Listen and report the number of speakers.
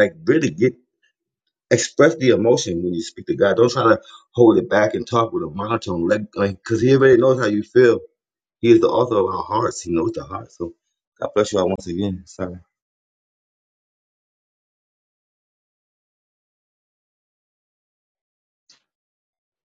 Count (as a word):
one